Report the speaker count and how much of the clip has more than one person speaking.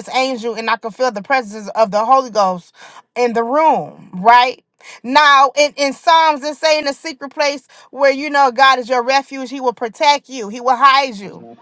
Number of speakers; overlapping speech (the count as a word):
one, no overlap